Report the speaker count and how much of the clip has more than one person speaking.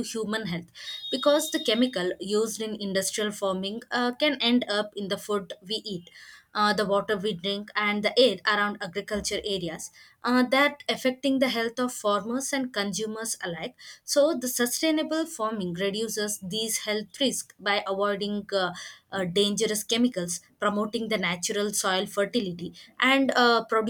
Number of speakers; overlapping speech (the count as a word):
one, no overlap